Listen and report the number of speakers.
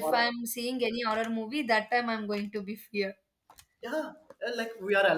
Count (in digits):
2